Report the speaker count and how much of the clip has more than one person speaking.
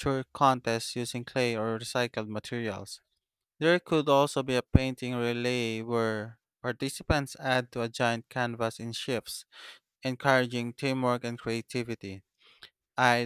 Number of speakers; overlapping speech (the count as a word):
one, no overlap